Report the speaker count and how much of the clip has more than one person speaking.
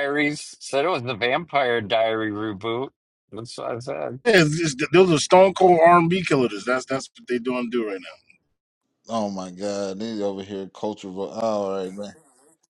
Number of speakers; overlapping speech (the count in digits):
3, no overlap